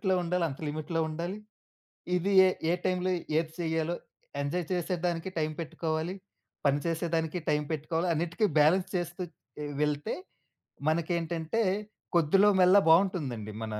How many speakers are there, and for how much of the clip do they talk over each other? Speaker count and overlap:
one, no overlap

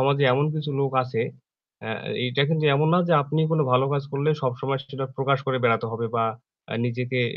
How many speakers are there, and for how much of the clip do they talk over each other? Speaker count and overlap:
one, no overlap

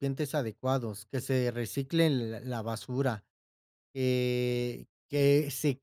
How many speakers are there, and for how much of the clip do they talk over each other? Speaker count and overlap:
one, no overlap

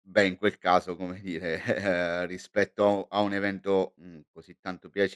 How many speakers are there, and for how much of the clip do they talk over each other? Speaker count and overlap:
one, no overlap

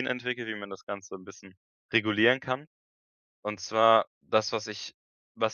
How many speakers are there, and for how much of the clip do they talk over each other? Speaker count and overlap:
one, no overlap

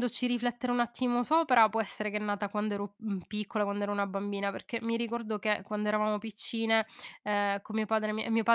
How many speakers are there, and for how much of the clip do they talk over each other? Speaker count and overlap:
one, no overlap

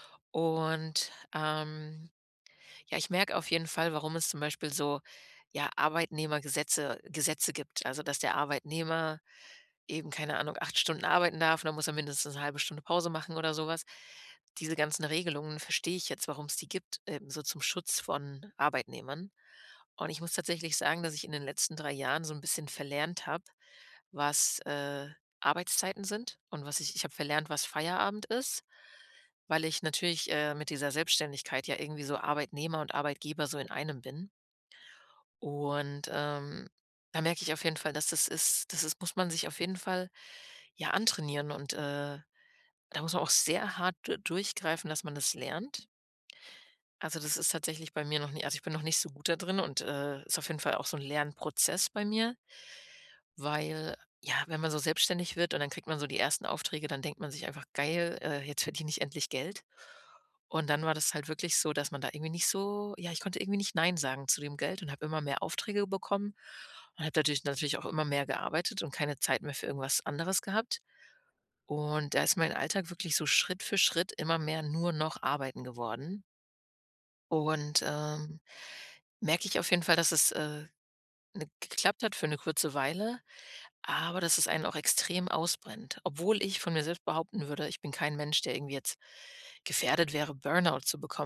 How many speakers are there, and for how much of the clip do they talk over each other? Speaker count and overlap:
one, no overlap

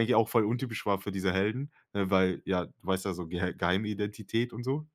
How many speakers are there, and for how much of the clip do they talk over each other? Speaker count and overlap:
one, no overlap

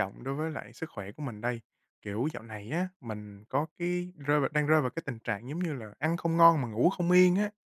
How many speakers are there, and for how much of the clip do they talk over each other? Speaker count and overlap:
one, no overlap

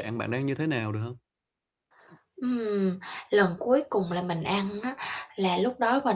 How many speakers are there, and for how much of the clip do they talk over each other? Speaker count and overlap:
two, no overlap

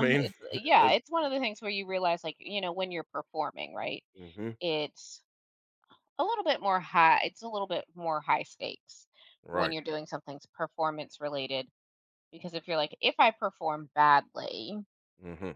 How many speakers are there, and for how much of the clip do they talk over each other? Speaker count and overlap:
two, about 4%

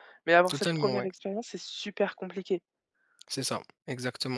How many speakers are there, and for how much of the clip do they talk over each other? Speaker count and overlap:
two, about 14%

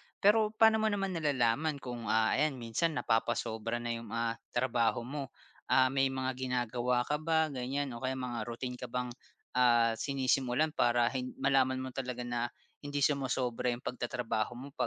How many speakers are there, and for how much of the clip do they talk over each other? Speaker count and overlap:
one, no overlap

